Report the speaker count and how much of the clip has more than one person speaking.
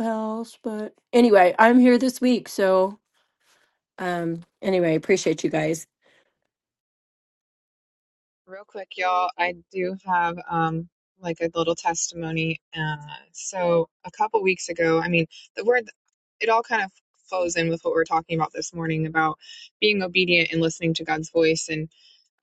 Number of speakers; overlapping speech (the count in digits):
2, no overlap